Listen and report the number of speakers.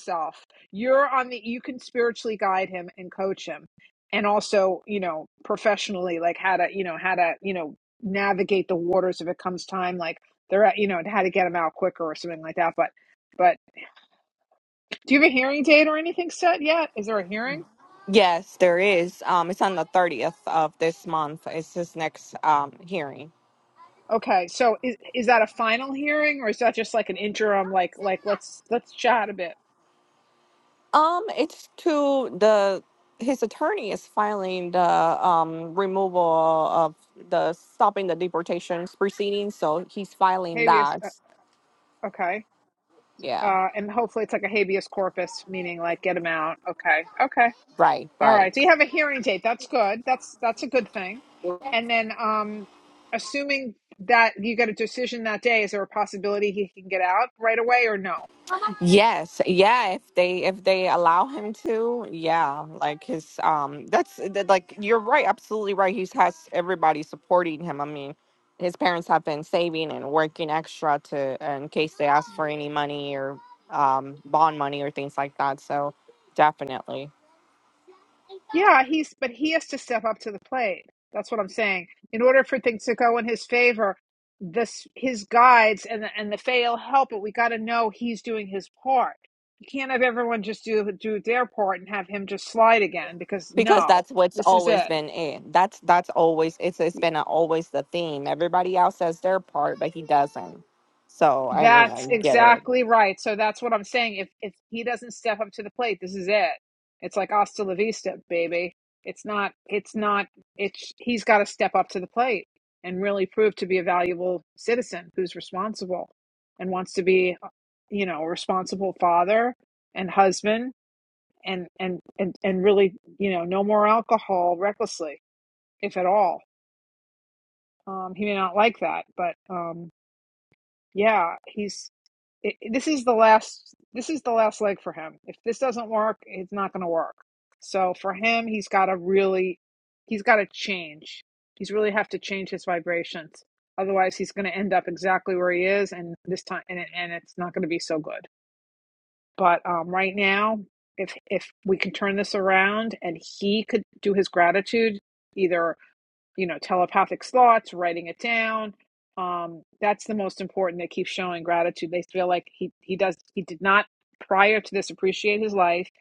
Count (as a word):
two